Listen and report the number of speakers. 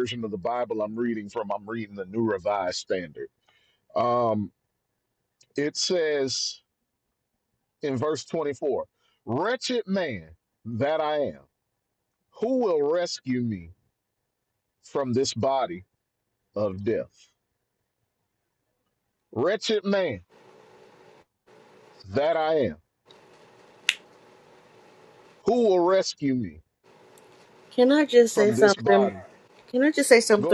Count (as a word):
two